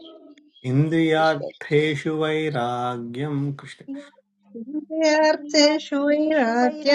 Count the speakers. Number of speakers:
3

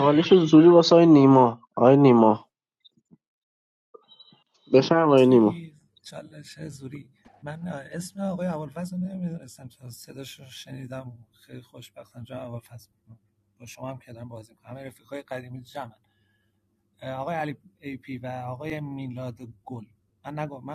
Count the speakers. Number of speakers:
2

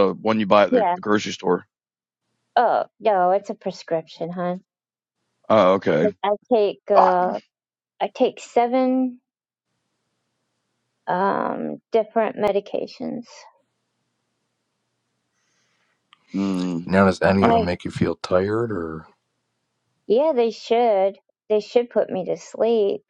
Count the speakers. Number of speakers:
3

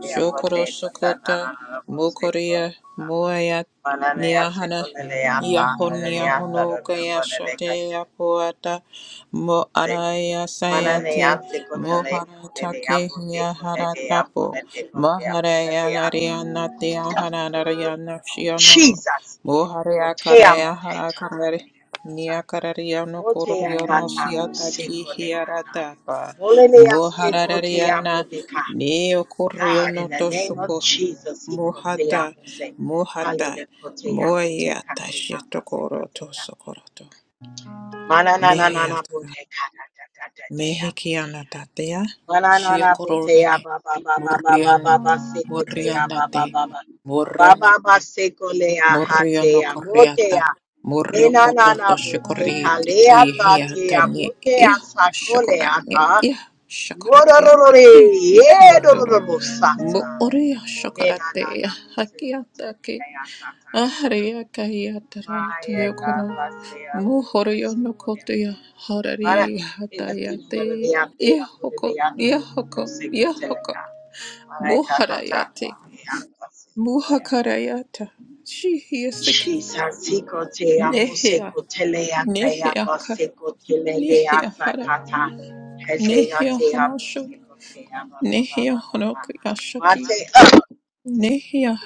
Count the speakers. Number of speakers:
2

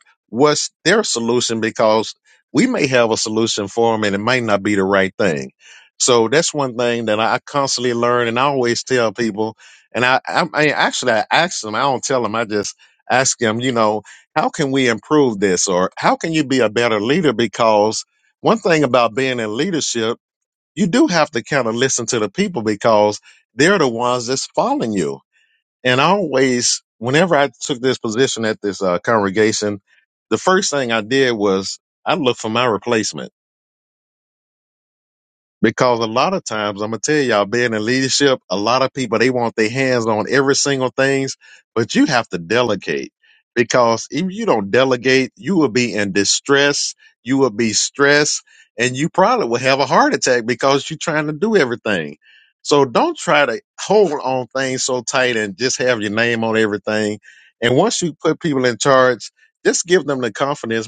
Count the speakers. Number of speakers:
1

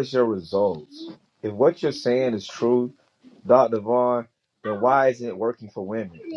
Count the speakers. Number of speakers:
1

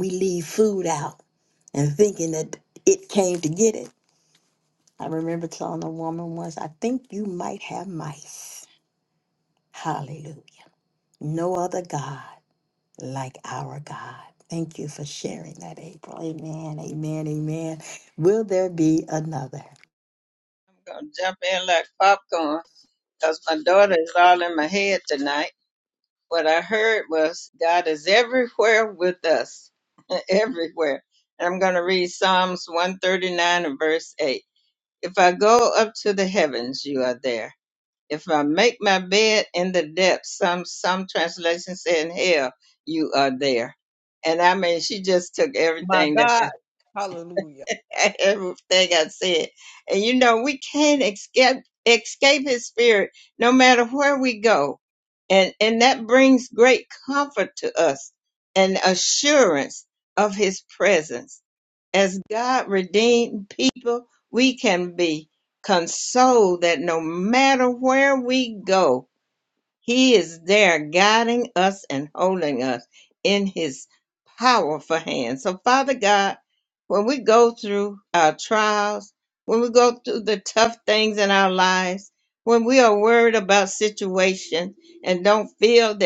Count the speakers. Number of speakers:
3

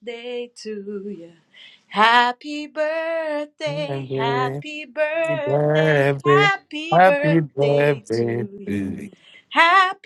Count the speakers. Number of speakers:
2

